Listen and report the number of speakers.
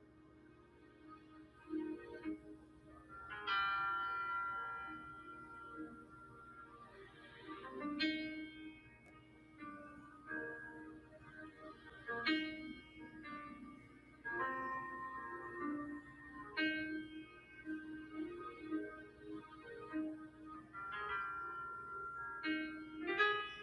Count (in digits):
0